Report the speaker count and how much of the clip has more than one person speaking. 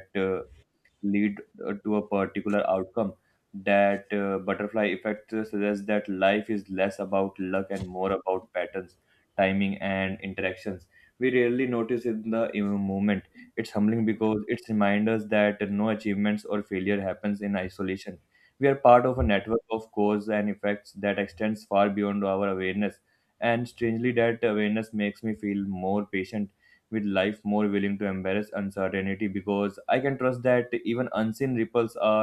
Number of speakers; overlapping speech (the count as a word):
one, no overlap